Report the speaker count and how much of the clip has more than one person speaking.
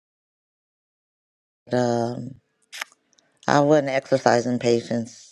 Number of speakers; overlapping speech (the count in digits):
1, no overlap